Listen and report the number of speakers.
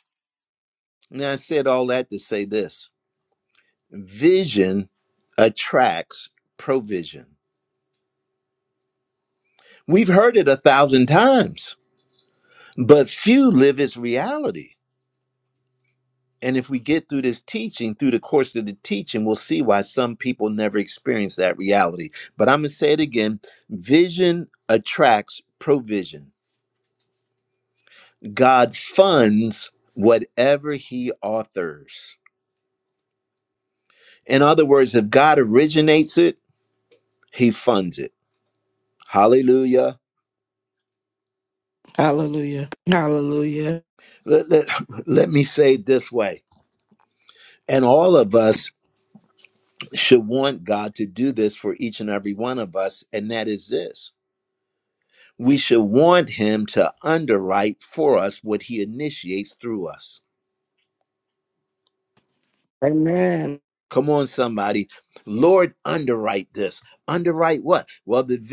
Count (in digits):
2